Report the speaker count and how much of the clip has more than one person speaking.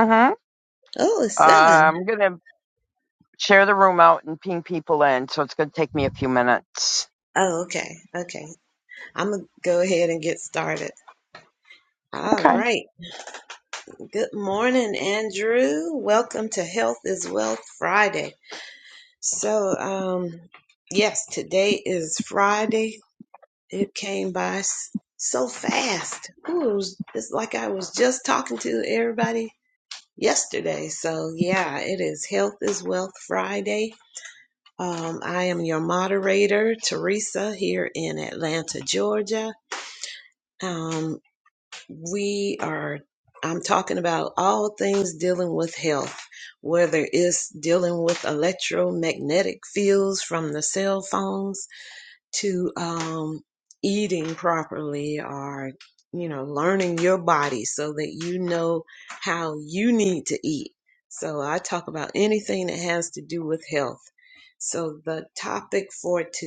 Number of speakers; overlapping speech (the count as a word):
two, about 1%